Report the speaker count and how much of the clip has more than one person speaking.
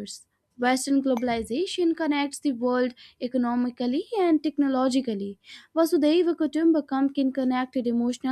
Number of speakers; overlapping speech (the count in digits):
1, no overlap